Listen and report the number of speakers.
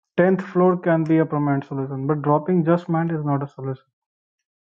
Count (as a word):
one